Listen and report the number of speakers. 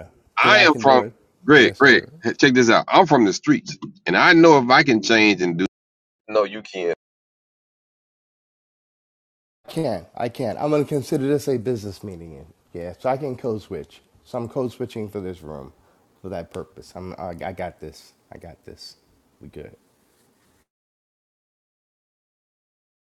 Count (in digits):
2